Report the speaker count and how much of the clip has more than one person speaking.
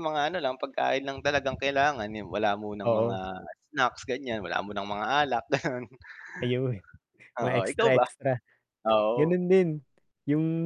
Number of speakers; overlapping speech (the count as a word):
two, about 11%